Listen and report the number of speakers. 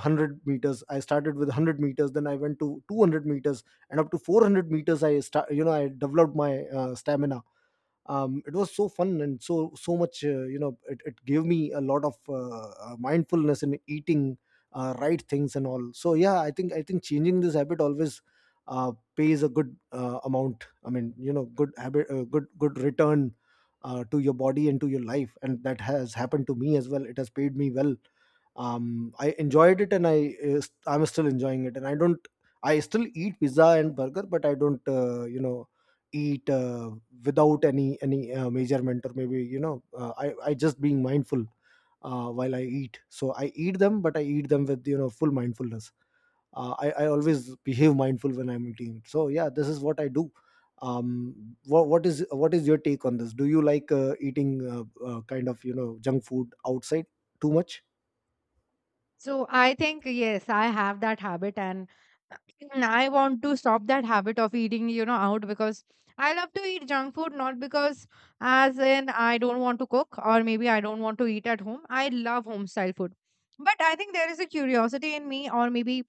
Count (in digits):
2